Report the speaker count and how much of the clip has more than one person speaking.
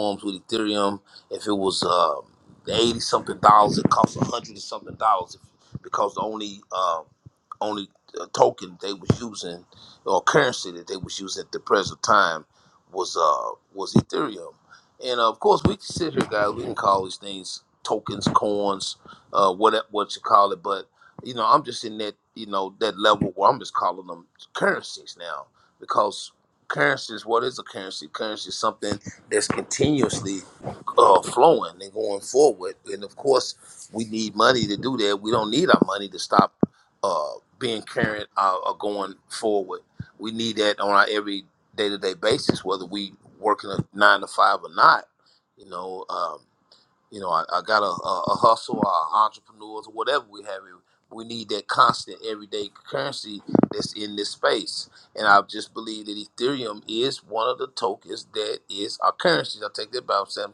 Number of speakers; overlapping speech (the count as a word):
one, no overlap